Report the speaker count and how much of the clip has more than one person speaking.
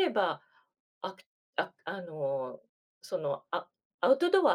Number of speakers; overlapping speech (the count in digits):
1, no overlap